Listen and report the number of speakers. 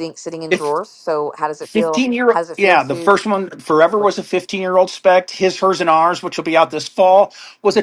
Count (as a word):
two